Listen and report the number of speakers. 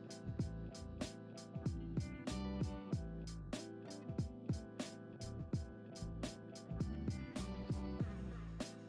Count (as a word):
zero